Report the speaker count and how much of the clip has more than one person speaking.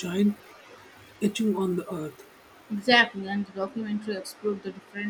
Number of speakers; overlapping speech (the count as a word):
two, no overlap